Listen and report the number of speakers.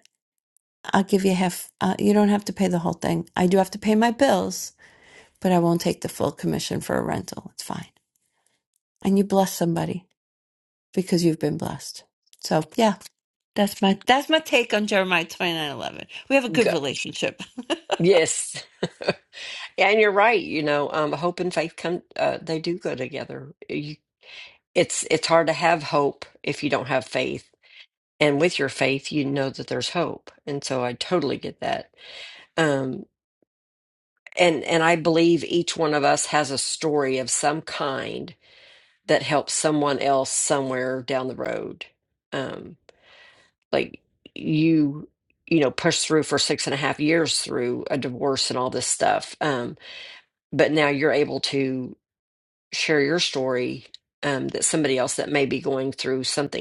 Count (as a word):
two